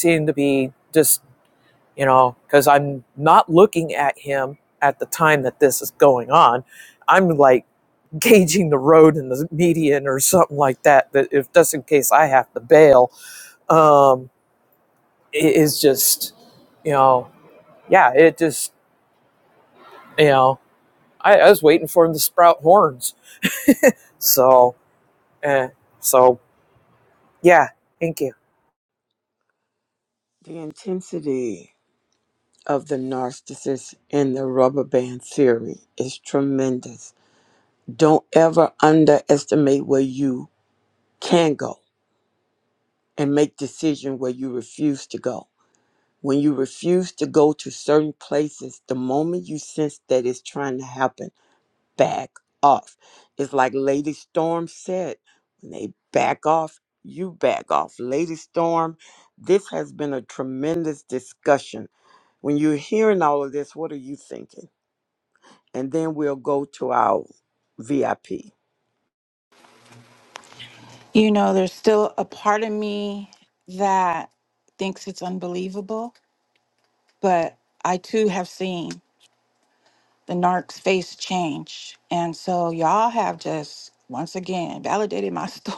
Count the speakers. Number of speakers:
three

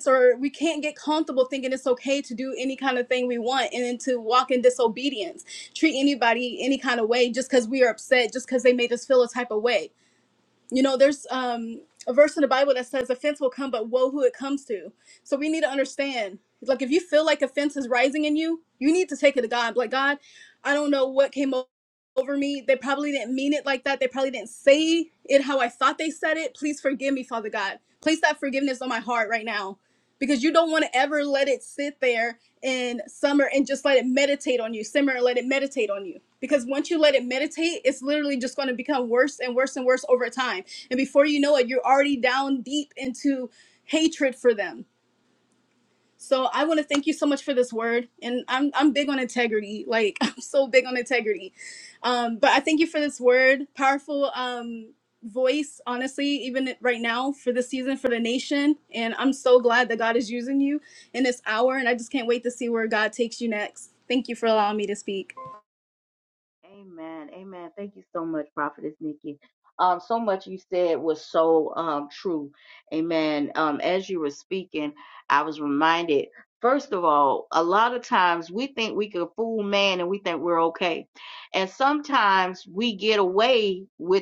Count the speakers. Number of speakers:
two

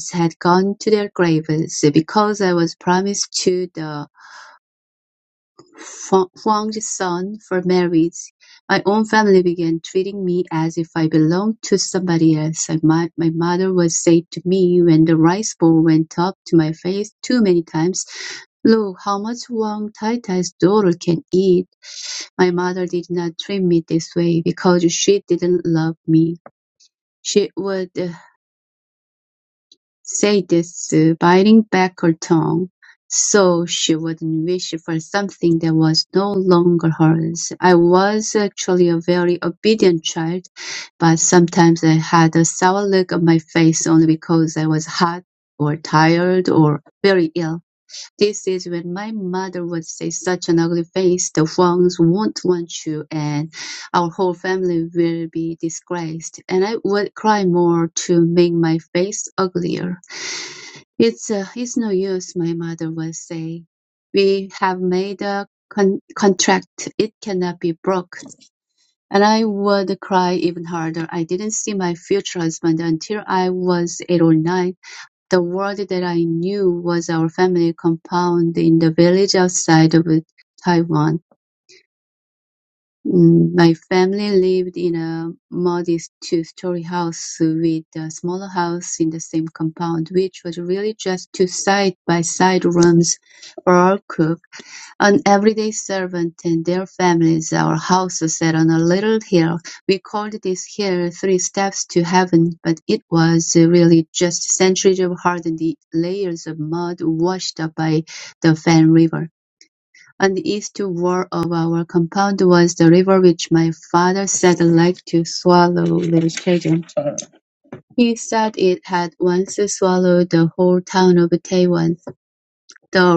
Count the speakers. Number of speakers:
one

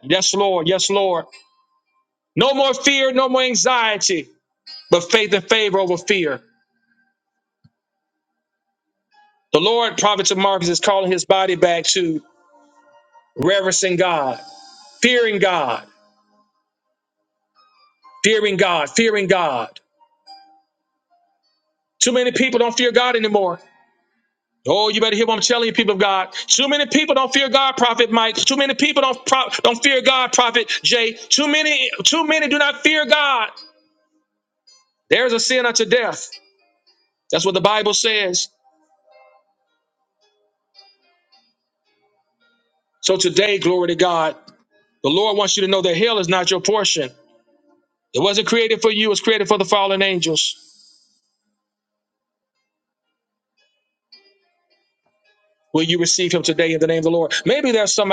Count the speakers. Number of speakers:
one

